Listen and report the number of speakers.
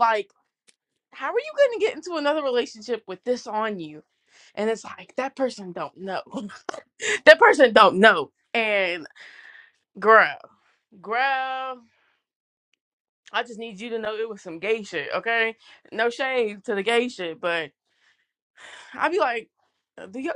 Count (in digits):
1